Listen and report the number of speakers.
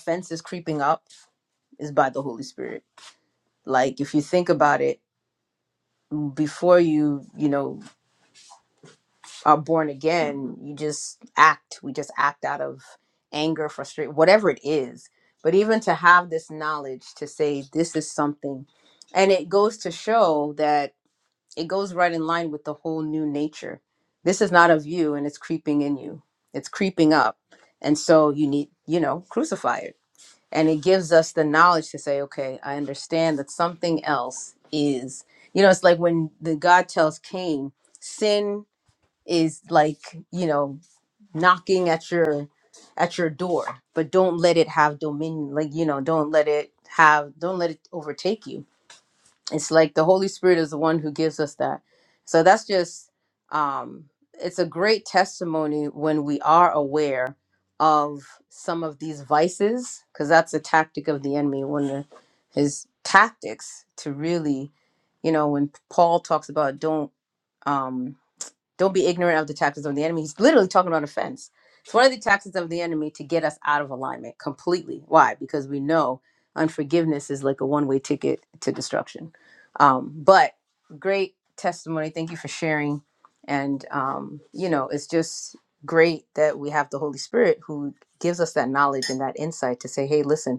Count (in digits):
1